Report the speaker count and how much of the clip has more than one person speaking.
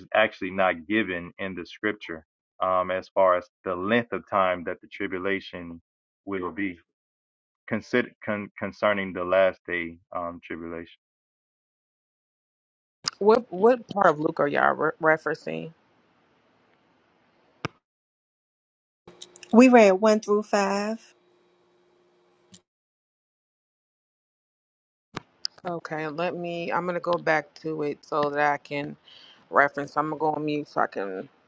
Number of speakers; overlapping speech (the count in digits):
3, no overlap